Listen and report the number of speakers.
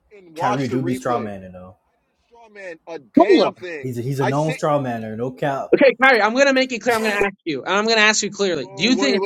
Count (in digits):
3